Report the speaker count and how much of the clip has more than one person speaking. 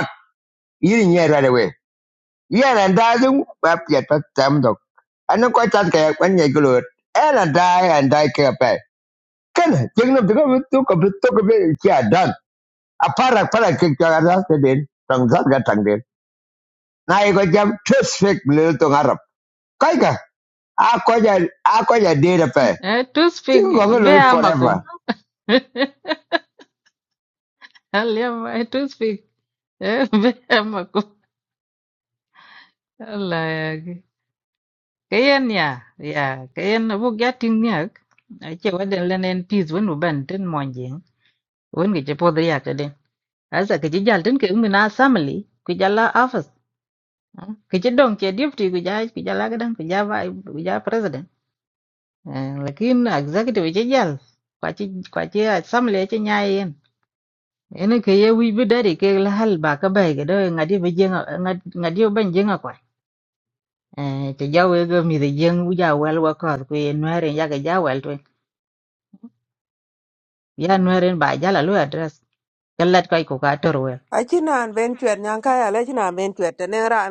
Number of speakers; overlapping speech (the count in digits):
3, about 2%